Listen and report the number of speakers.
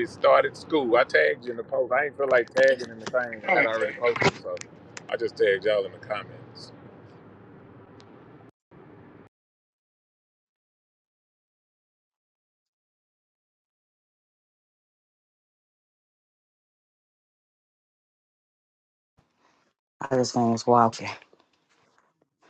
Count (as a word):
two